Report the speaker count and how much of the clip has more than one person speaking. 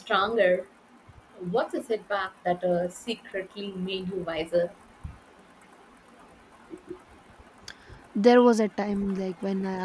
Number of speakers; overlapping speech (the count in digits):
2, no overlap